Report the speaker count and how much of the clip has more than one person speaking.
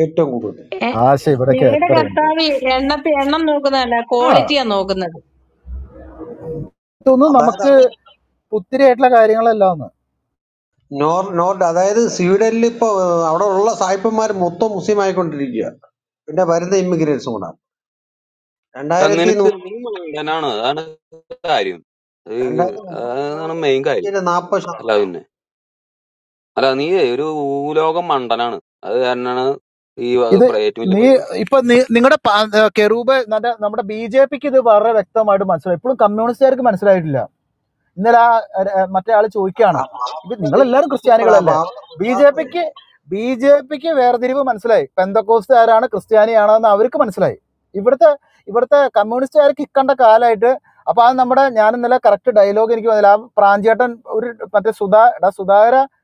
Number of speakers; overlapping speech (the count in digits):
4, about 8%